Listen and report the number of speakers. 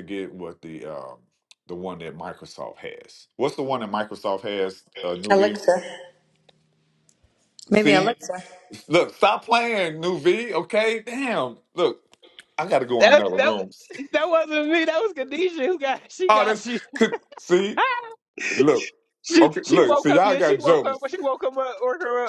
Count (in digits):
3